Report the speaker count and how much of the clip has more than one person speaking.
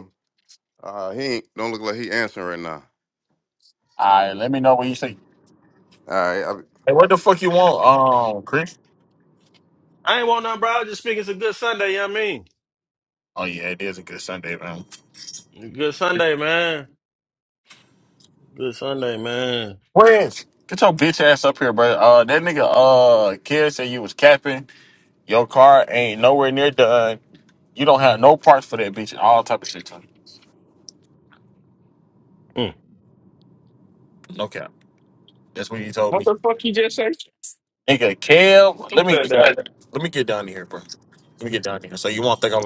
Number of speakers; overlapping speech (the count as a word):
four, about 1%